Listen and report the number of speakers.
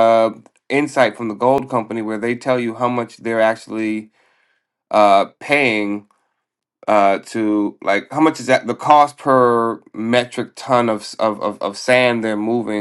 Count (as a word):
one